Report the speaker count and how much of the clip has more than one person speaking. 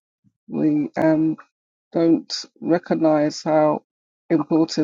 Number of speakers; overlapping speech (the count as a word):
one, no overlap